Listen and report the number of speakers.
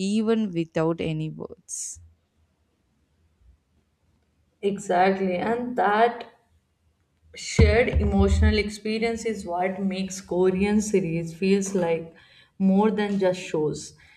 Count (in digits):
2